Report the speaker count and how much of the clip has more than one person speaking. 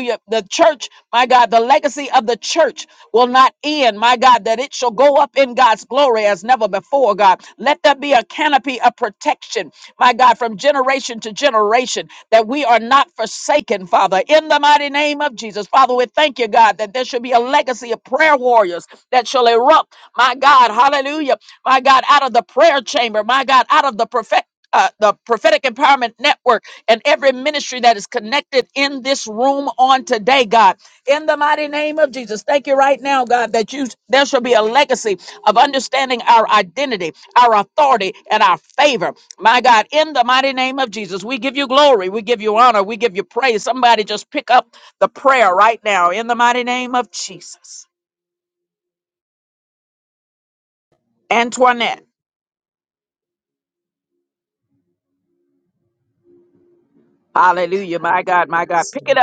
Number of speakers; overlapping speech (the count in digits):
1, no overlap